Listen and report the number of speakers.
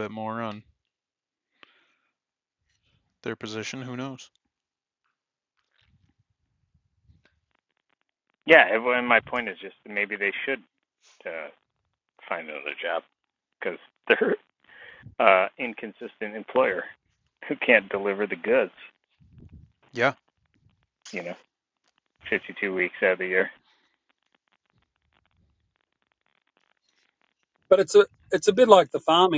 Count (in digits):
3